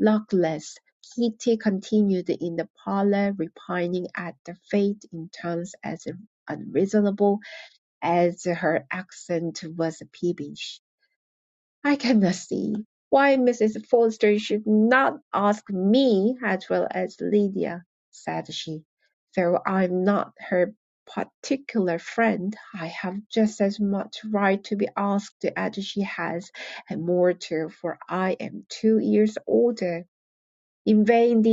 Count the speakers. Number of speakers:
1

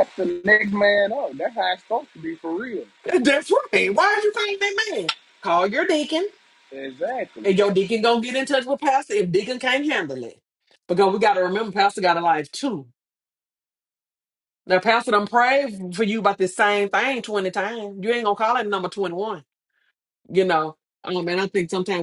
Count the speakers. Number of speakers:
2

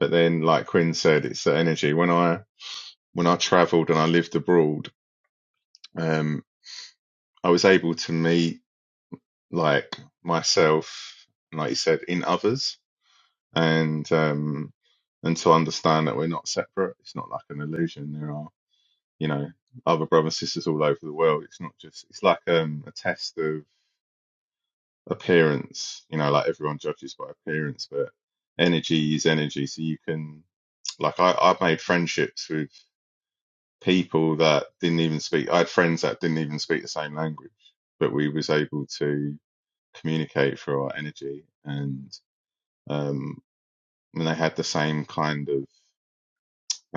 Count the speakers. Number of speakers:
1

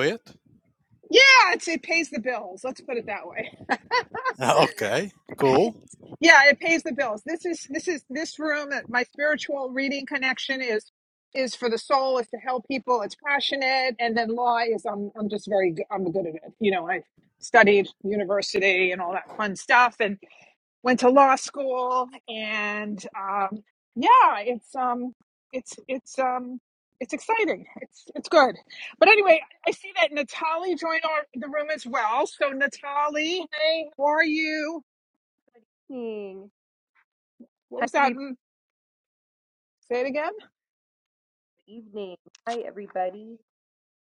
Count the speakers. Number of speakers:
3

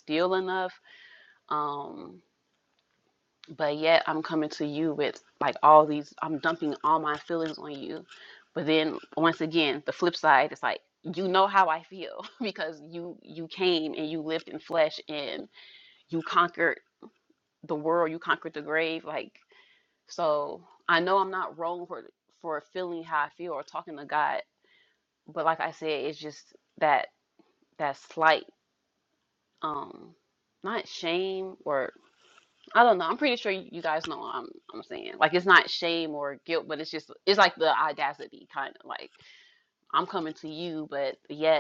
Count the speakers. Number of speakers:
1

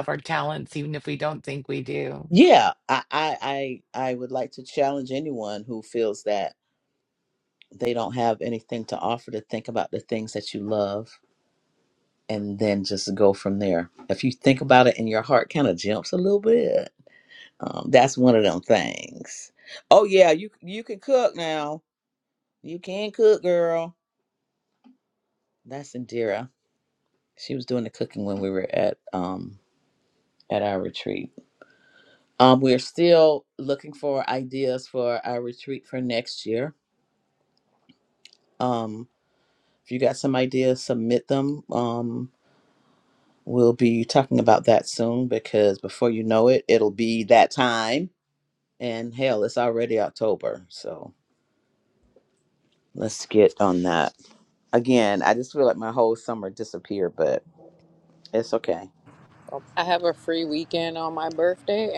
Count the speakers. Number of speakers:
3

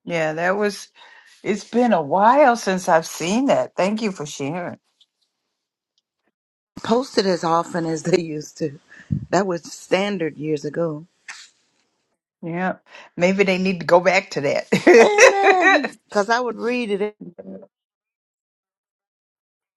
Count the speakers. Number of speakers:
2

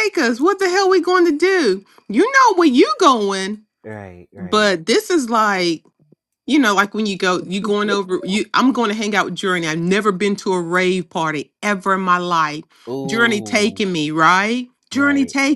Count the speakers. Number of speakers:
2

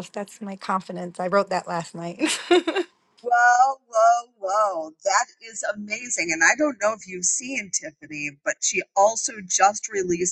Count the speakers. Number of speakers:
2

